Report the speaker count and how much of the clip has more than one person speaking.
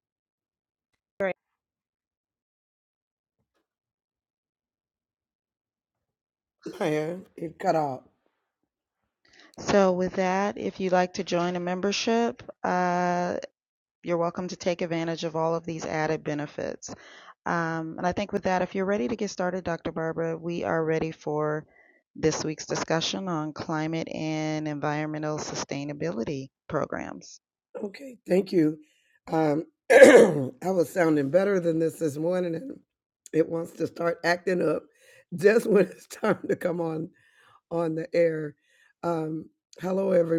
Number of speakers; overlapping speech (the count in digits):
2, no overlap